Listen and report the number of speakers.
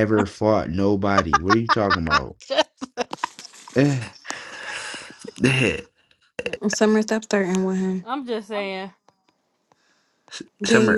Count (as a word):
three